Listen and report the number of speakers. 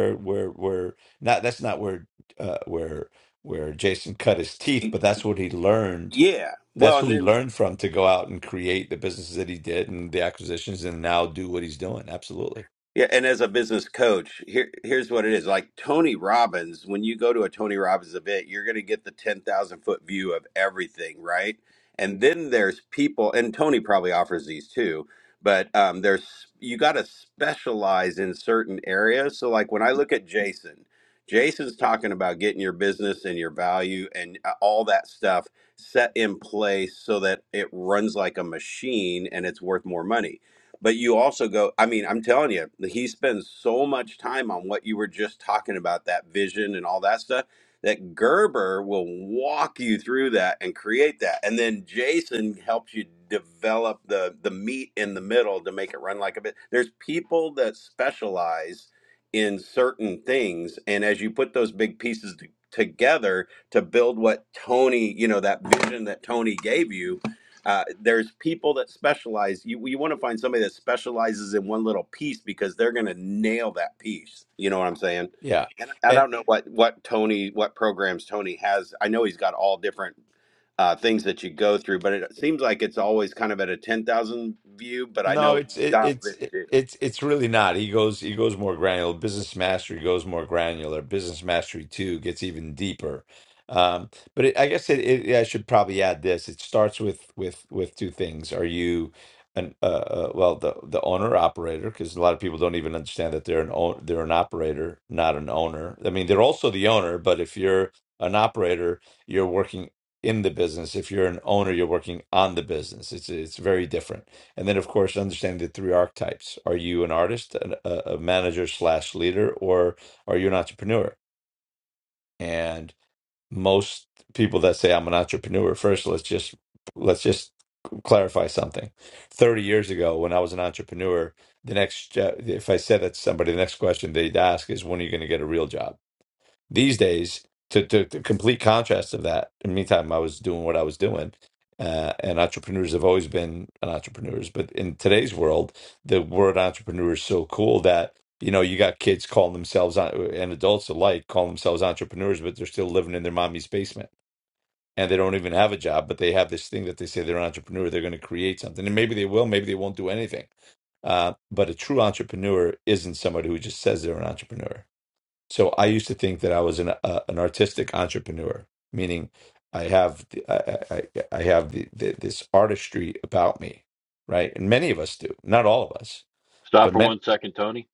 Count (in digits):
3